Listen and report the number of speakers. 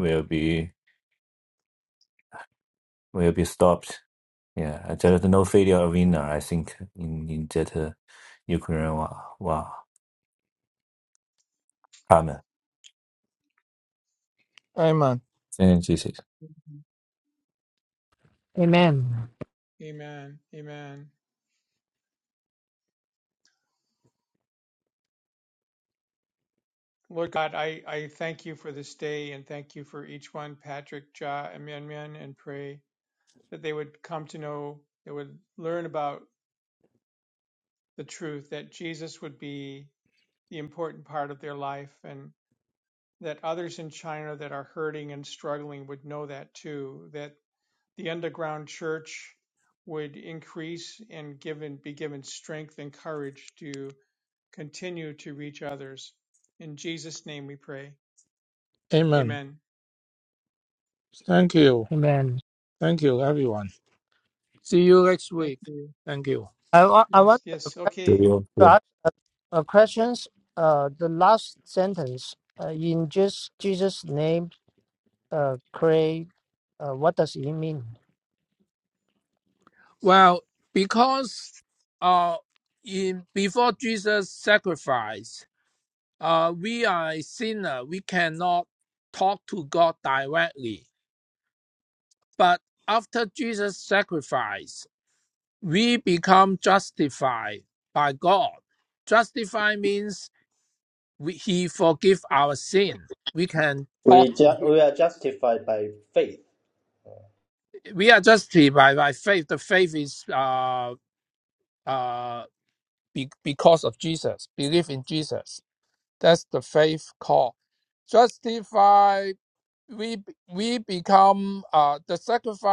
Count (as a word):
five